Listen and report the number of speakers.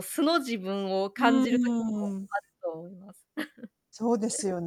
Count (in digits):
2